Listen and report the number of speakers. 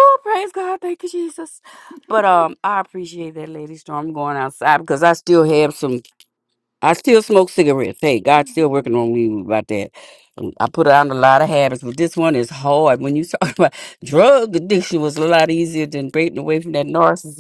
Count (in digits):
1